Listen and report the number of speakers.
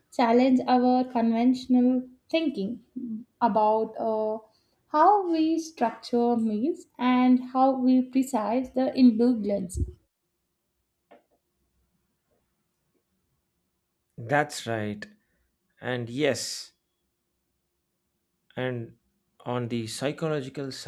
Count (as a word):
two